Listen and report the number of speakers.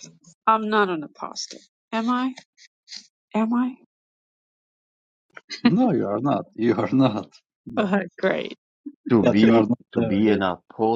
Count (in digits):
3